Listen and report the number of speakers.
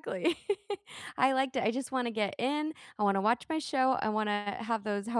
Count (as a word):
one